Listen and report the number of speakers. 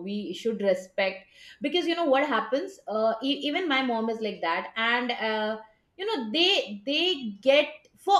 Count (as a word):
one